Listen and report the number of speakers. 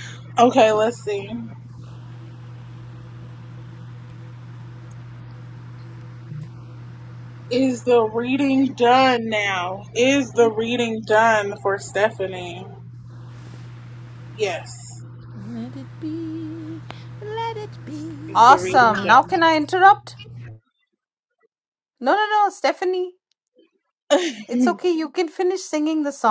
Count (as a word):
three